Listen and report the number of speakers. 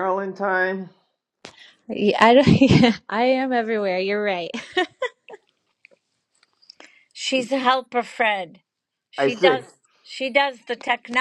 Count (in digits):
3